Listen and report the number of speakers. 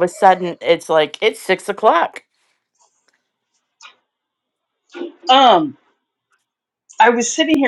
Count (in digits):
2